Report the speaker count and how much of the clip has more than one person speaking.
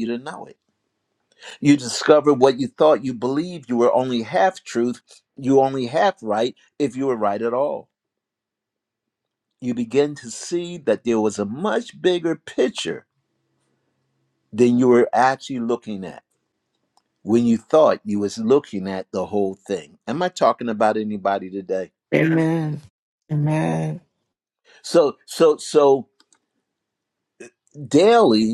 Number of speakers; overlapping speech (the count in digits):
2, no overlap